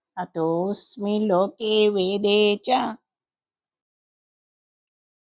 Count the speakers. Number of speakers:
one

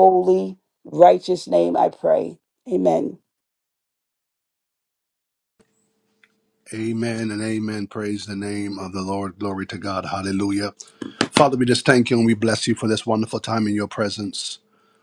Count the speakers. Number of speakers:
two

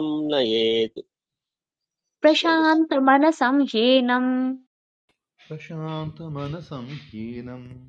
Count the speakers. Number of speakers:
three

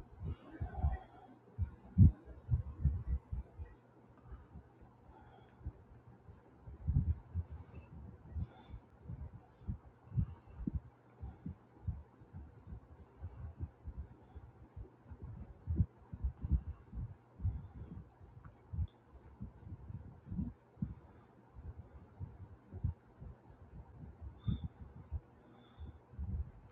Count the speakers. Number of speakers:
zero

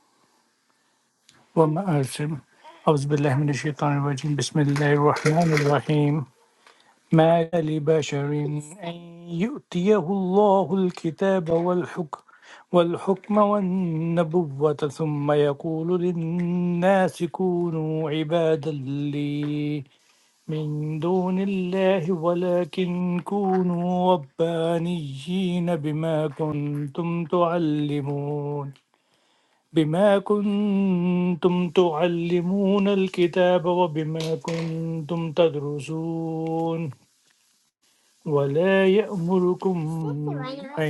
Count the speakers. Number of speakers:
one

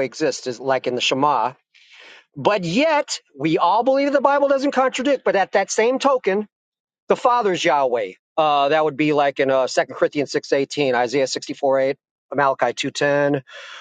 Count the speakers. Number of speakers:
one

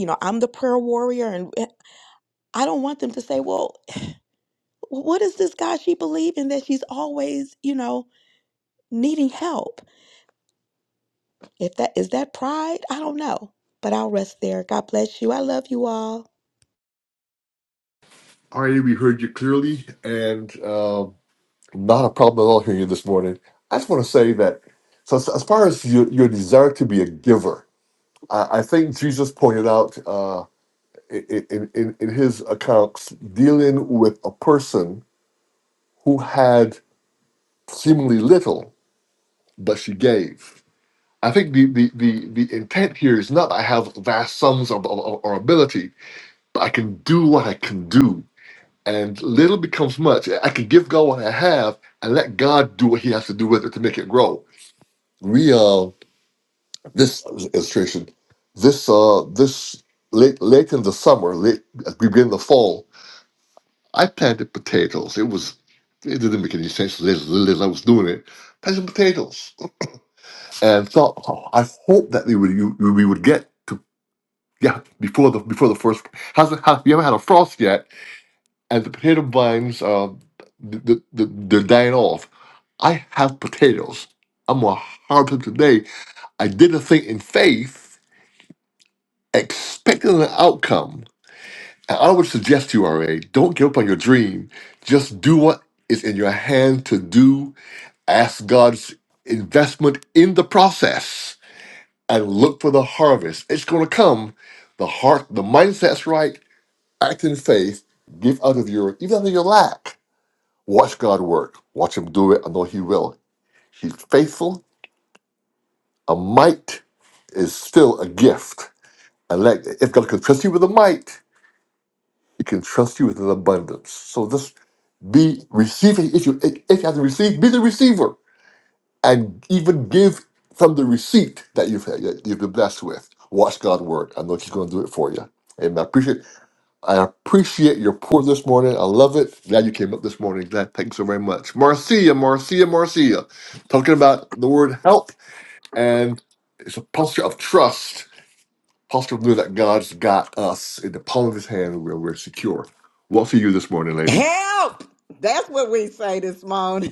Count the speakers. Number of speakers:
three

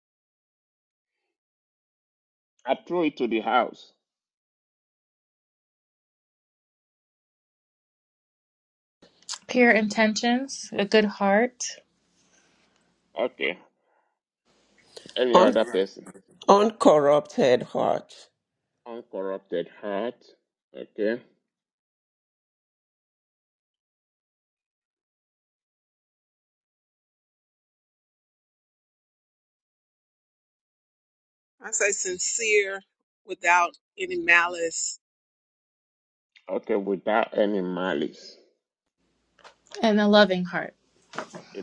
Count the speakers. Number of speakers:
four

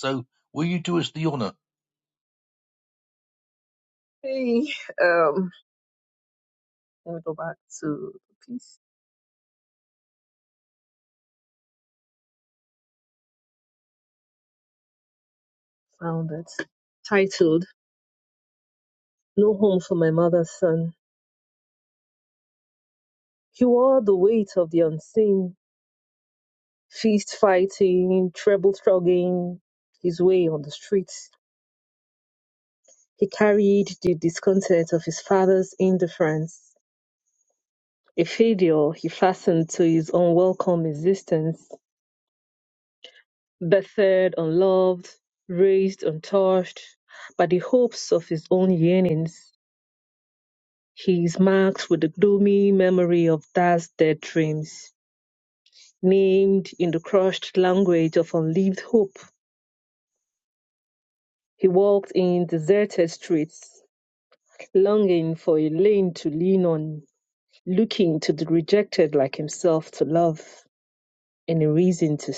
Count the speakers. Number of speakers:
two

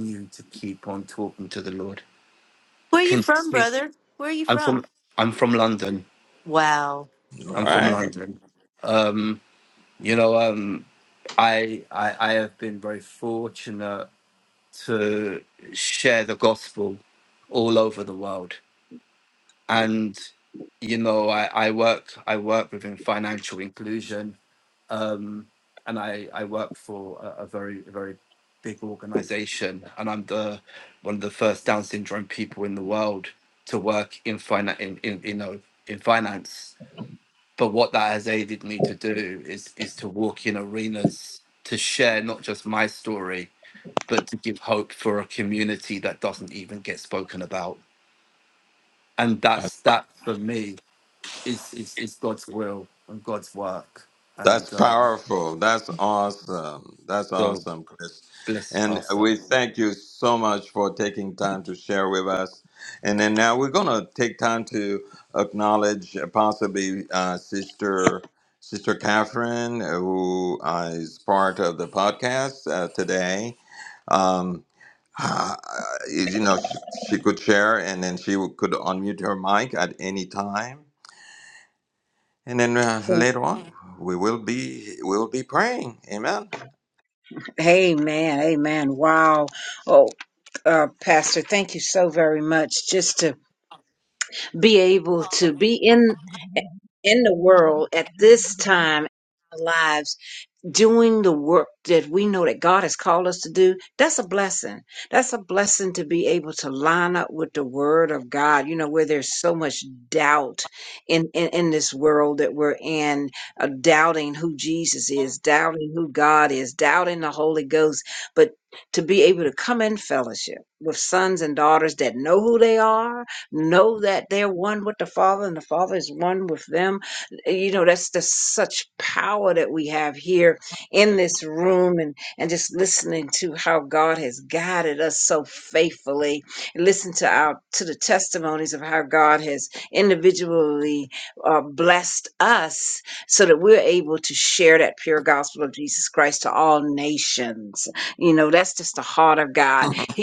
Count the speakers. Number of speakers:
four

